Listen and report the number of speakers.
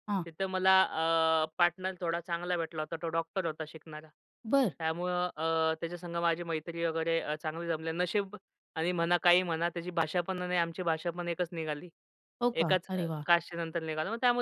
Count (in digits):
2